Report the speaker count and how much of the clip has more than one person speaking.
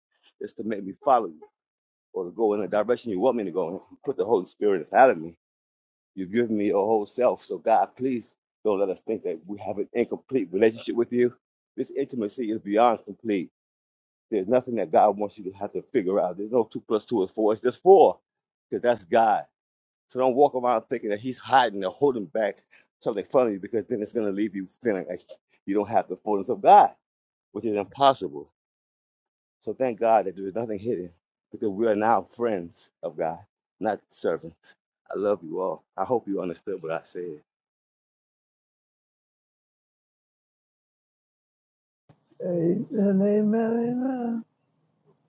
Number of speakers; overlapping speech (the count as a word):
two, no overlap